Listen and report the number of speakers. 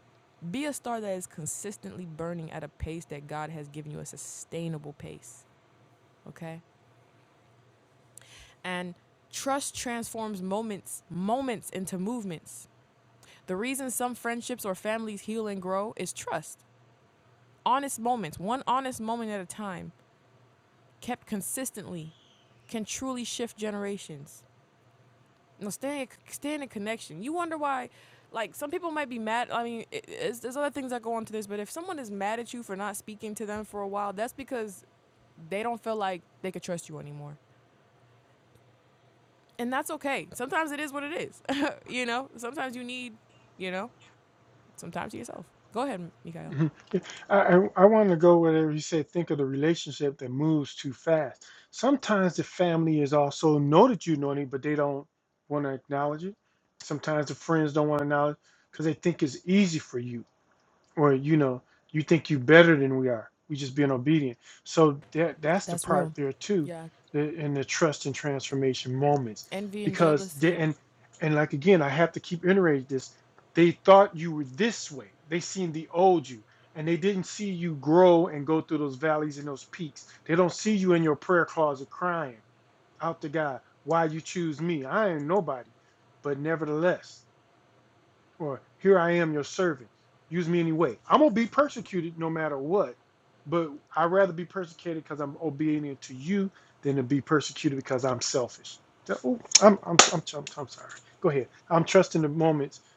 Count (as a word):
two